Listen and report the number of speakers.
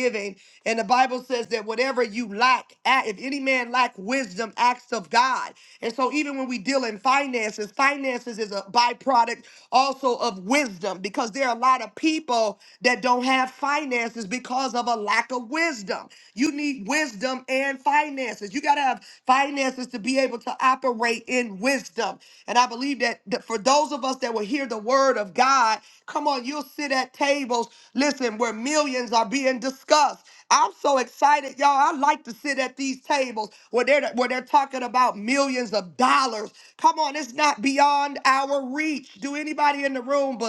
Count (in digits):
1